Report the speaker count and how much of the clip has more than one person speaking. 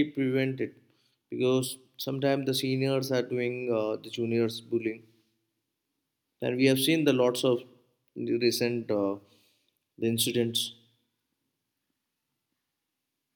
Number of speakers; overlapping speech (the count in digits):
1, no overlap